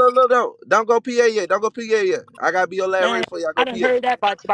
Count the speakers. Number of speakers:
2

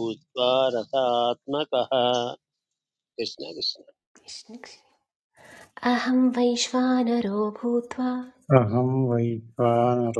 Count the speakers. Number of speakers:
3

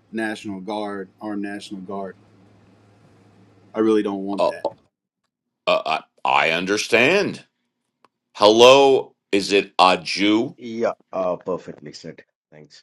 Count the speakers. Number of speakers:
3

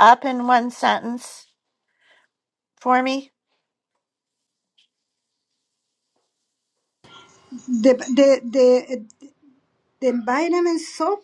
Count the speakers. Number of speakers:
2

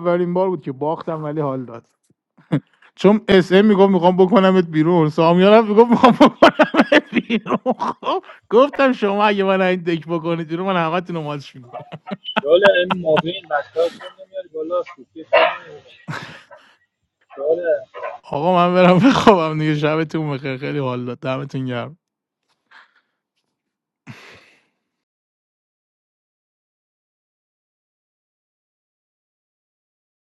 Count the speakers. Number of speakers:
2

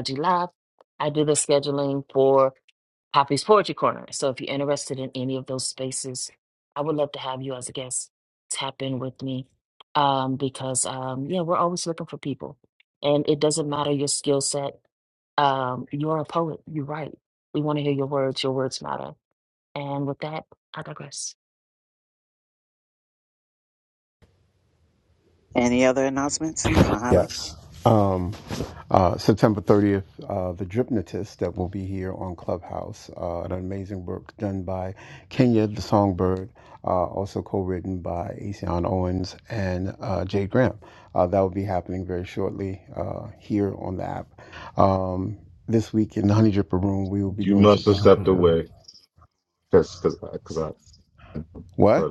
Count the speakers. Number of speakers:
4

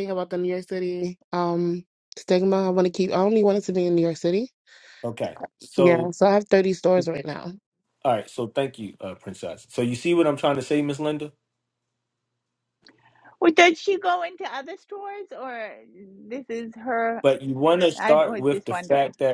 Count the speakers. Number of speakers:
3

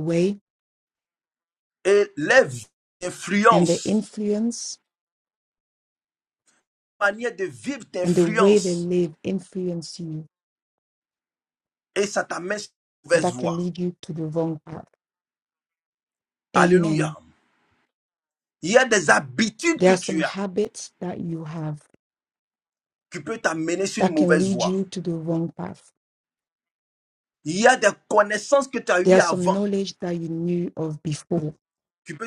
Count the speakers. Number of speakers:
2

